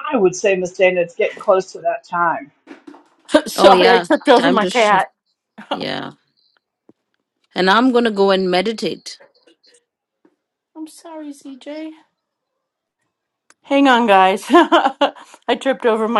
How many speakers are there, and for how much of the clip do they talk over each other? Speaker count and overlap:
three, about 9%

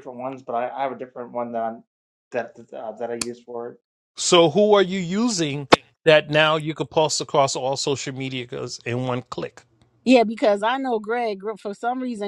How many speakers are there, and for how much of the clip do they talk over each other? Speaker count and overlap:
three, no overlap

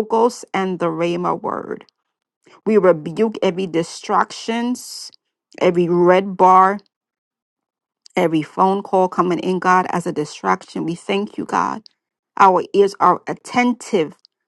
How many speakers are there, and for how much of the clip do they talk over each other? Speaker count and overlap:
one, no overlap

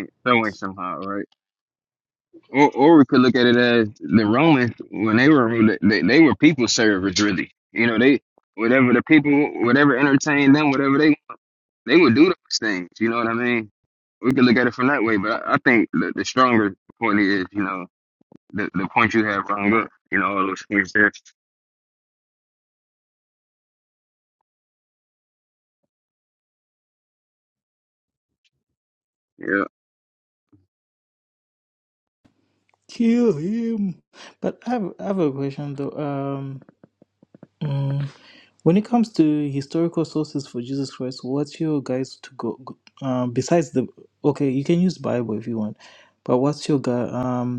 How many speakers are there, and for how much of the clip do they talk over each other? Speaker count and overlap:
two, no overlap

